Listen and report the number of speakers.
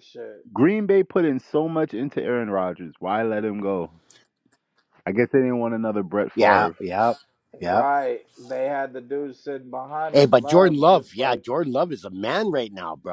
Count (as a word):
three